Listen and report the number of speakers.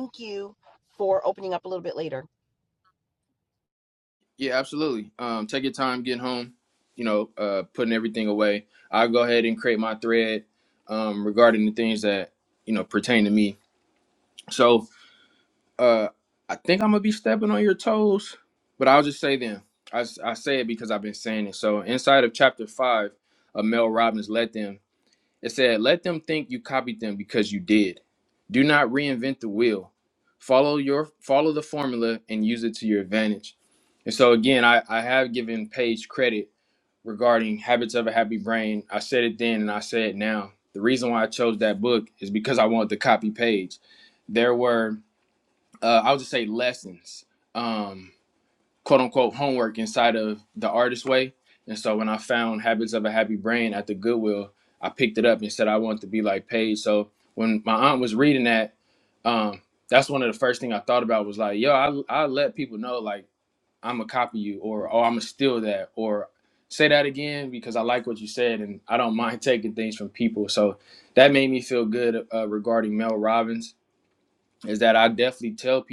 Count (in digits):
2